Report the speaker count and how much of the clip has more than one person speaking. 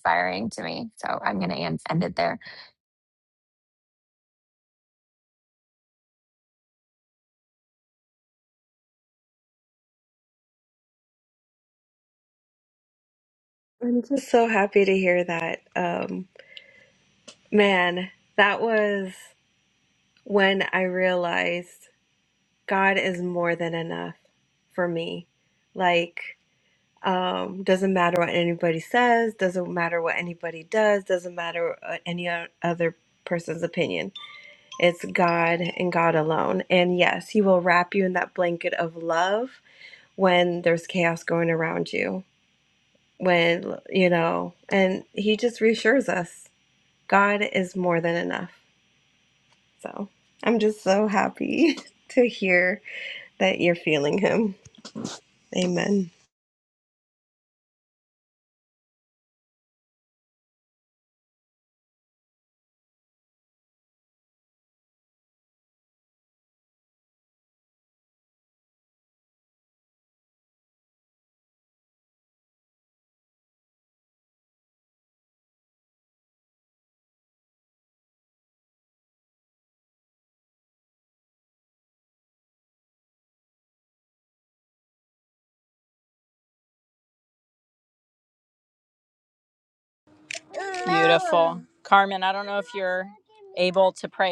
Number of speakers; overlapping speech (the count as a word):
three, no overlap